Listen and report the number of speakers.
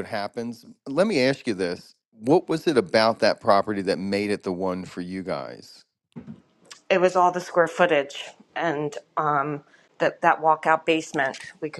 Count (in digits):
2